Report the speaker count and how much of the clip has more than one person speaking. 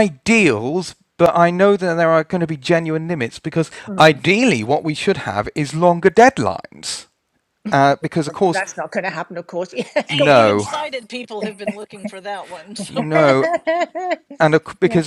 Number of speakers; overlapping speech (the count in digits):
3, about 11%